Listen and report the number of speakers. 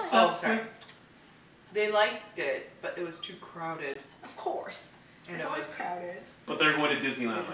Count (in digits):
3